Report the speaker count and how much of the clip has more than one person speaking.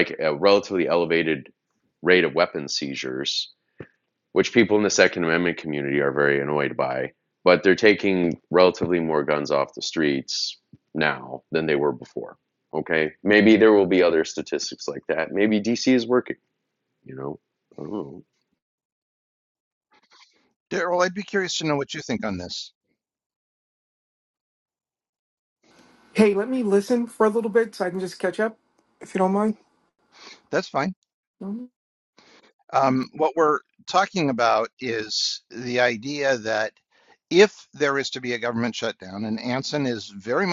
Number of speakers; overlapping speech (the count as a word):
three, no overlap